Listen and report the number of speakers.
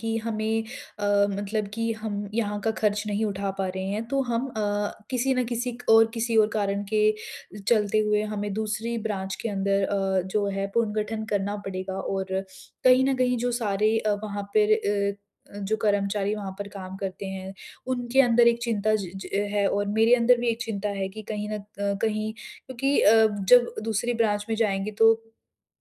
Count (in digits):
1